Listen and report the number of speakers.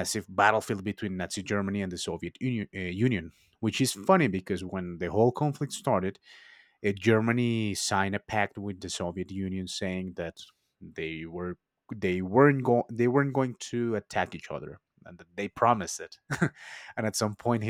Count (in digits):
1